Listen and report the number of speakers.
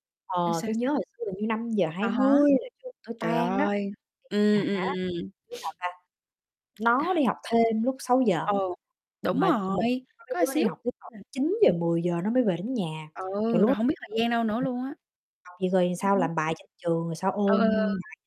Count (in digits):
2